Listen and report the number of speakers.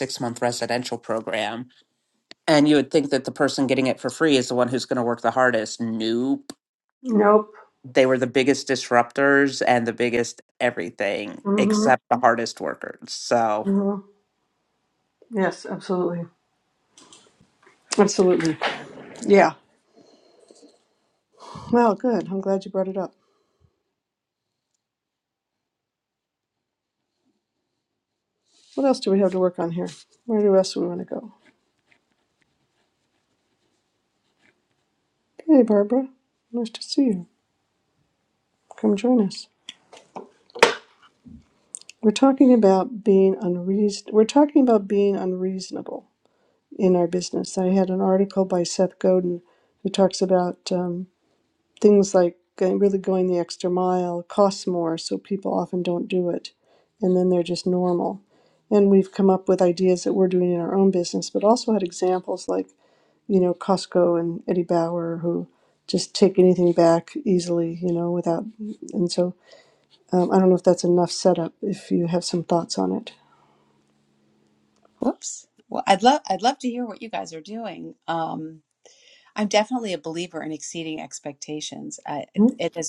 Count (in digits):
3